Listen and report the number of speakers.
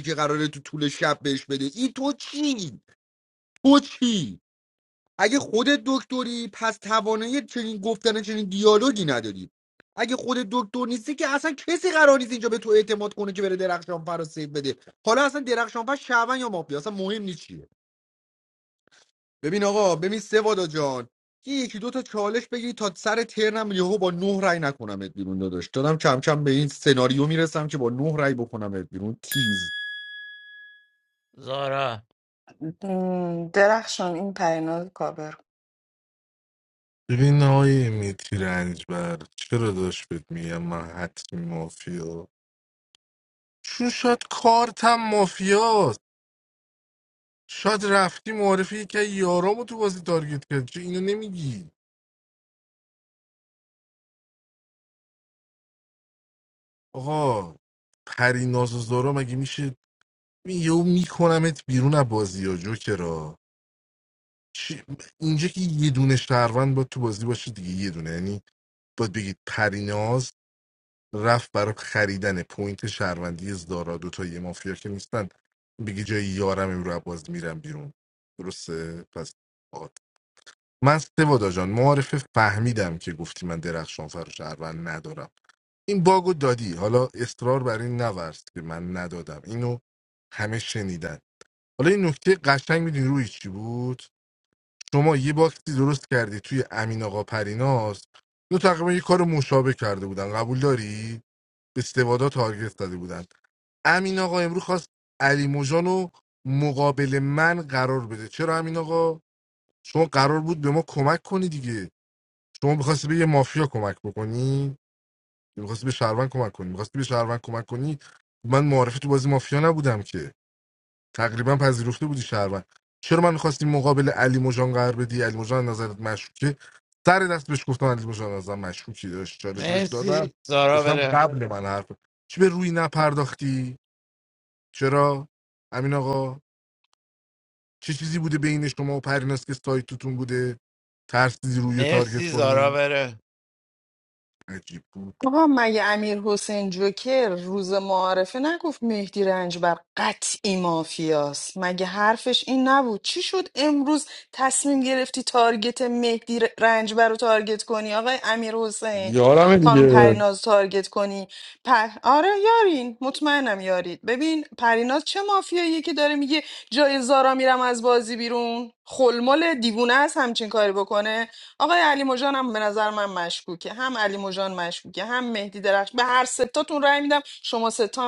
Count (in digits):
4